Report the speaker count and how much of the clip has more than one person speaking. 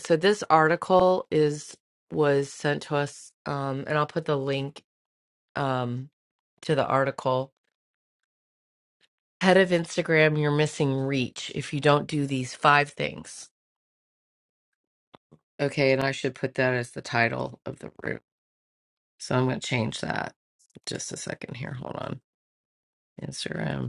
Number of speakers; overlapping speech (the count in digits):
1, no overlap